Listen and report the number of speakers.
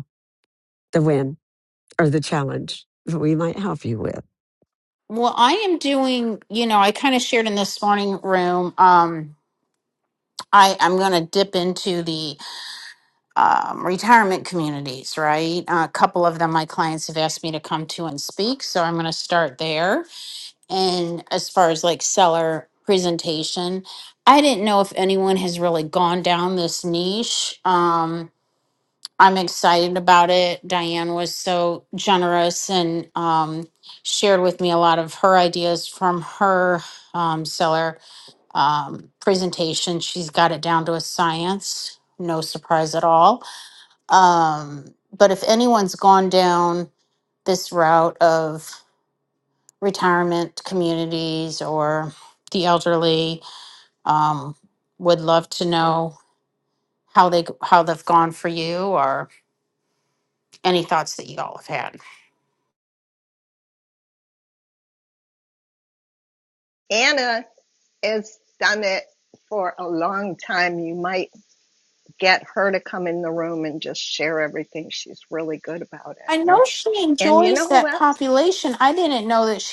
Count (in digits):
3